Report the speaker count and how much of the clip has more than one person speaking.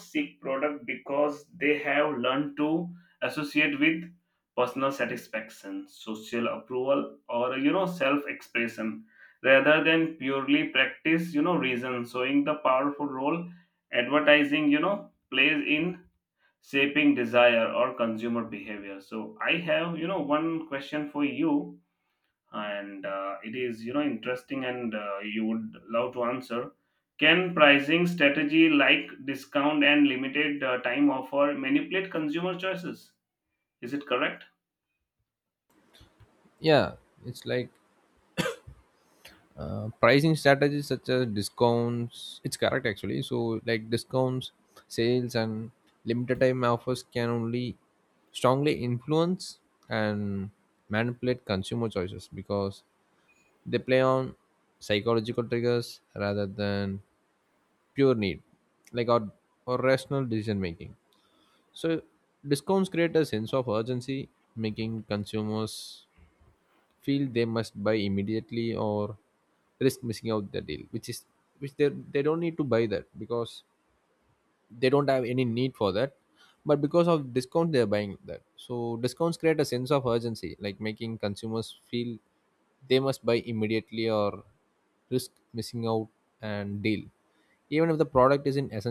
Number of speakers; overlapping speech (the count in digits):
2, no overlap